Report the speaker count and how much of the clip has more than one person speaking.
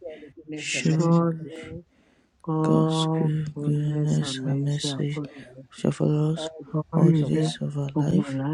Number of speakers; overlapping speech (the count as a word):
three, about 55%